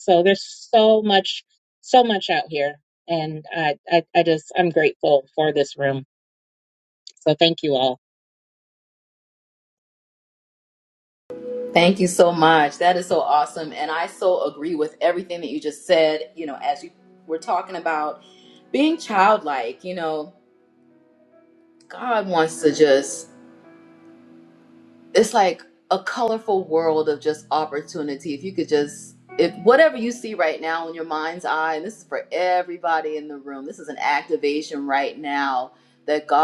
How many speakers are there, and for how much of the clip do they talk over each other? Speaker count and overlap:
2, no overlap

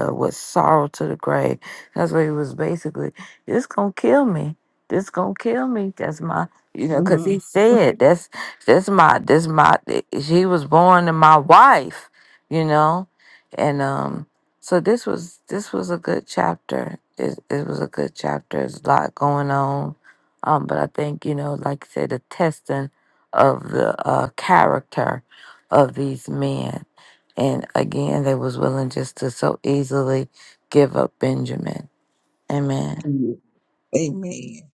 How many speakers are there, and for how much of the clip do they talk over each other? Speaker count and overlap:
2, about 1%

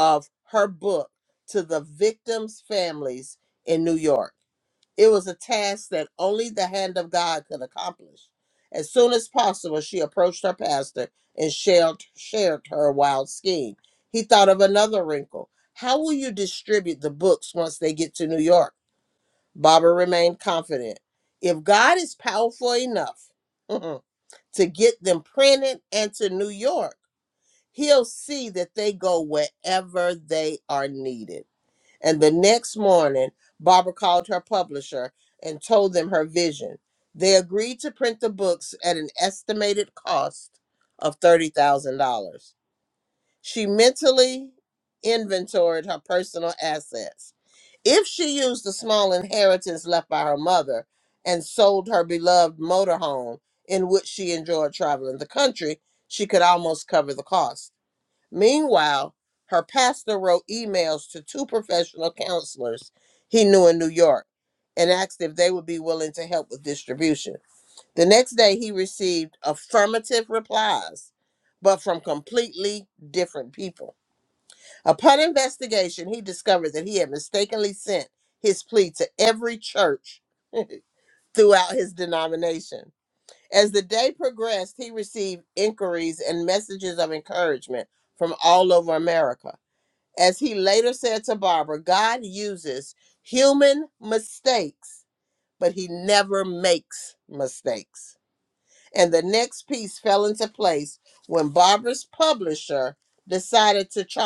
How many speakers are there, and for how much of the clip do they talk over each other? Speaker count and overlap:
1, no overlap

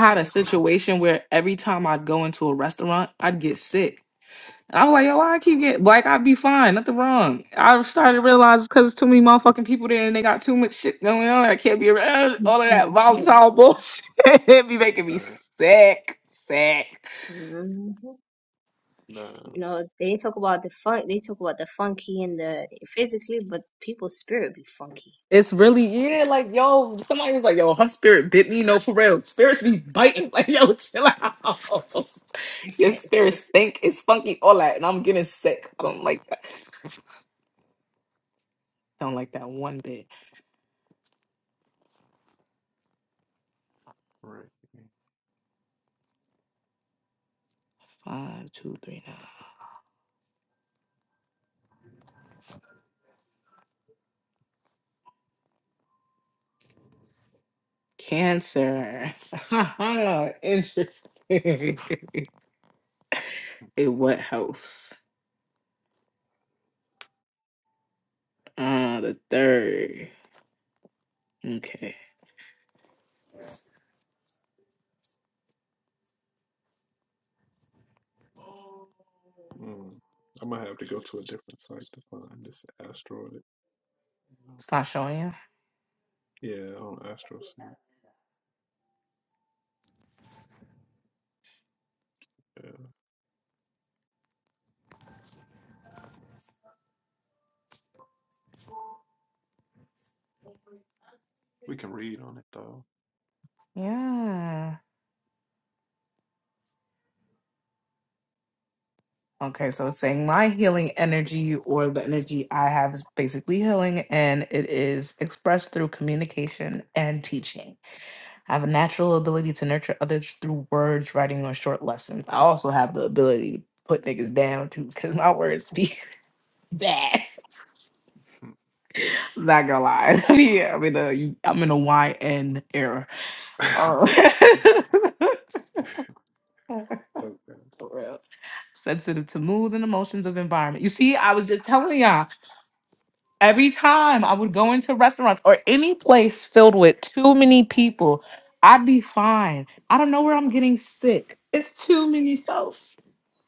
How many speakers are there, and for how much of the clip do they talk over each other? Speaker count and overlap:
3, about 1%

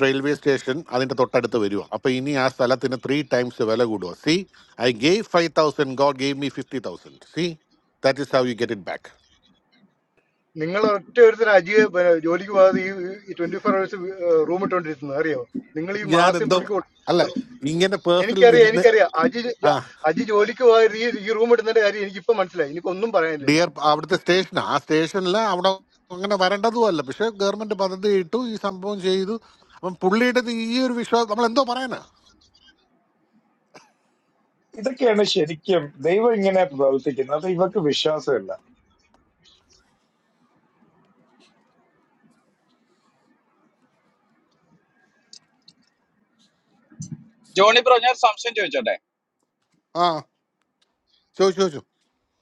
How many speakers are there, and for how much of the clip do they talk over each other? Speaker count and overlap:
4, about 3%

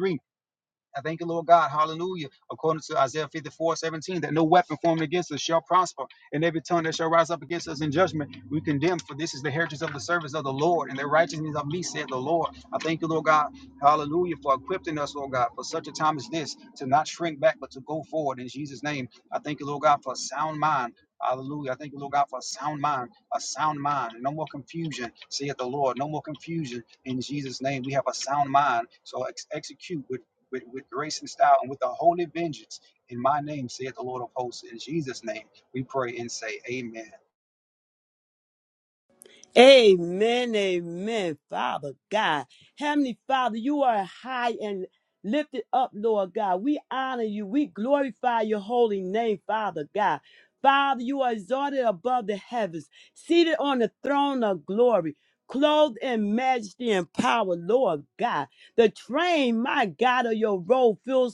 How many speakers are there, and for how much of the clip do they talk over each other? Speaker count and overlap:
2, no overlap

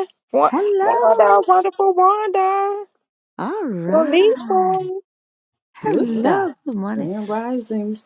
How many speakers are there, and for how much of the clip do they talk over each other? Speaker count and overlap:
3, about 32%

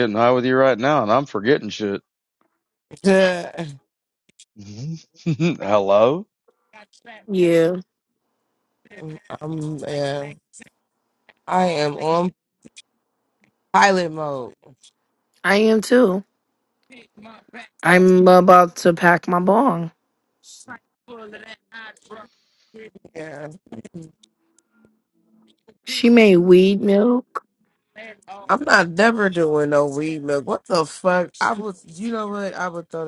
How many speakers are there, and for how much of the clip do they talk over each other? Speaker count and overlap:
3, about 1%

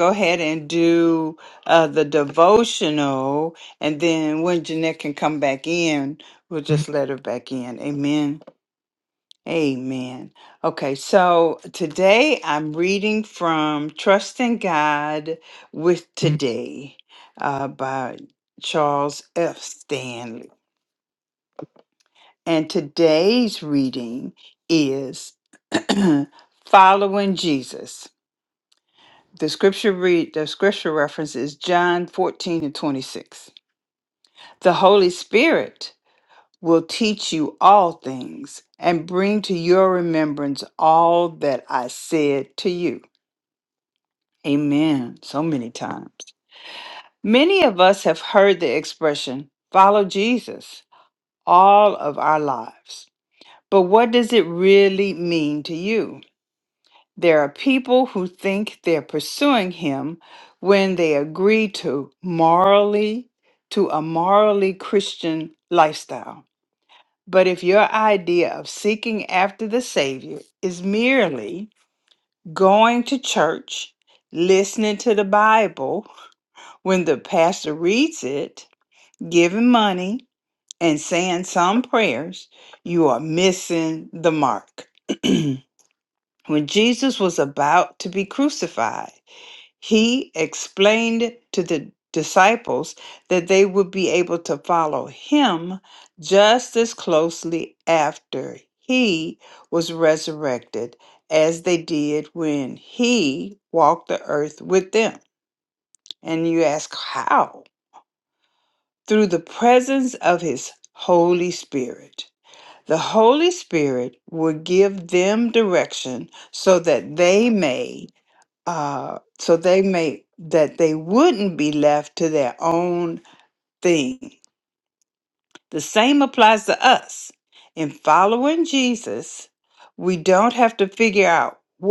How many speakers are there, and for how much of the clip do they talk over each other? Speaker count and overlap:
1, no overlap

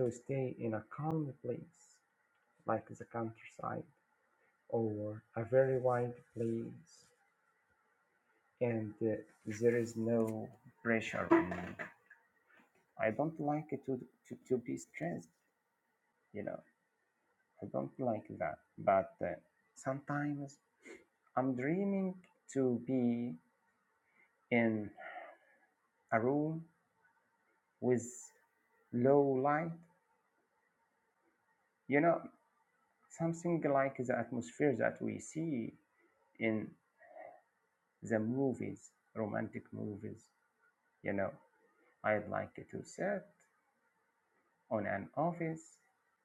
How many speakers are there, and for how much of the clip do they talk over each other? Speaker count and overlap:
1, no overlap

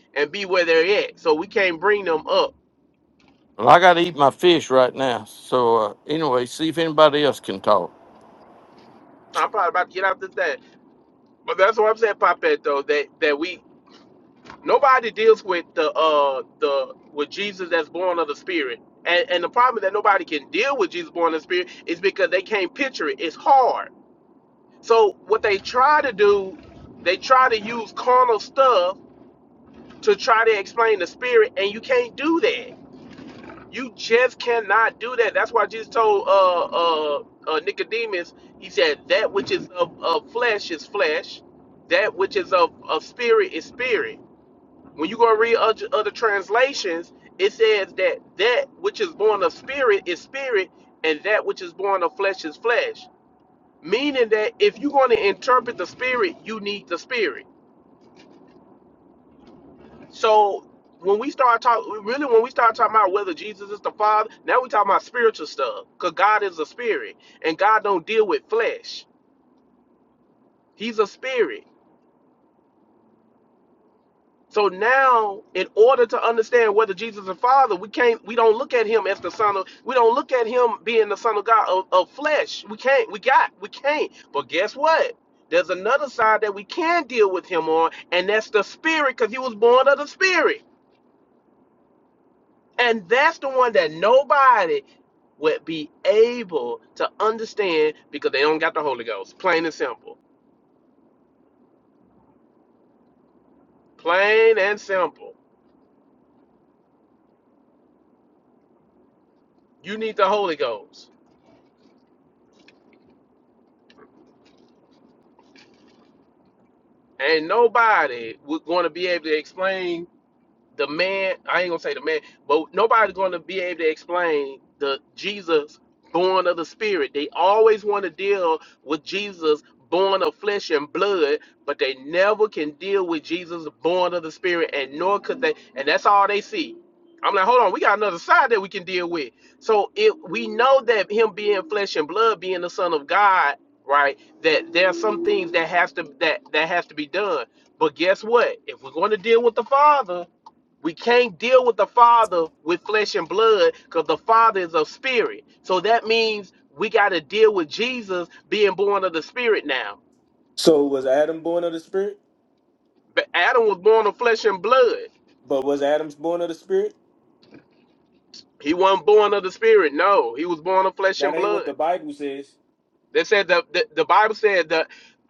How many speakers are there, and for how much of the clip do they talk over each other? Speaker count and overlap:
3, under 1%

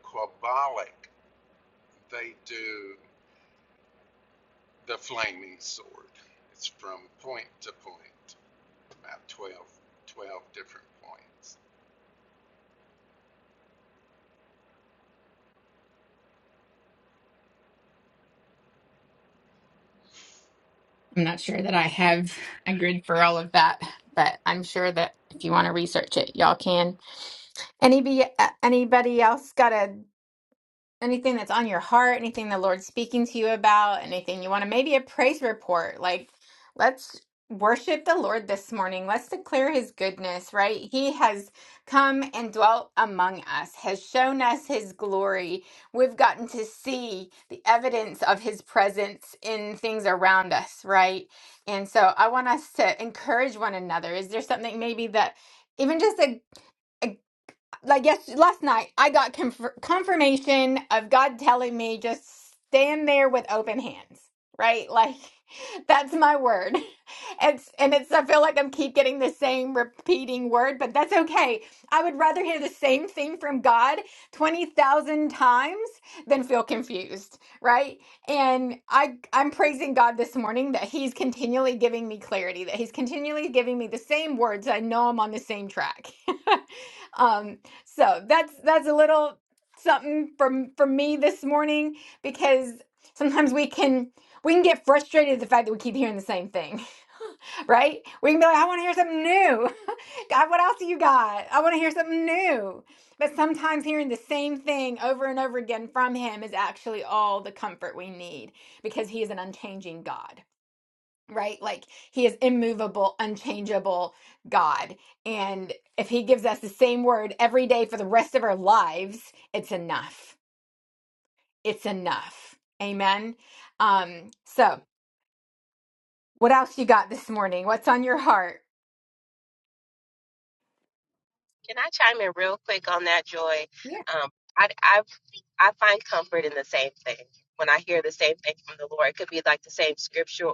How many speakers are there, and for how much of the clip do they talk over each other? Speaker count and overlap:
3, no overlap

